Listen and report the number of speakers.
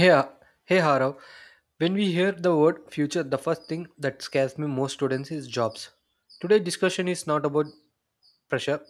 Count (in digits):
1